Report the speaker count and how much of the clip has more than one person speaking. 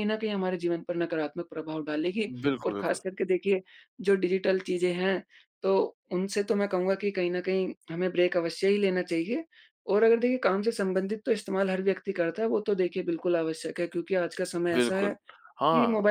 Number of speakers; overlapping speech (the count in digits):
2, about 7%